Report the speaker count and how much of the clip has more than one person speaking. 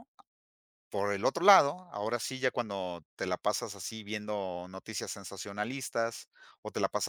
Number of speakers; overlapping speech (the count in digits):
1, no overlap